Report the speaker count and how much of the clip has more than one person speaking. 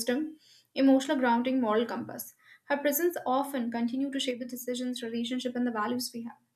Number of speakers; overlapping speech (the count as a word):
one, no overlap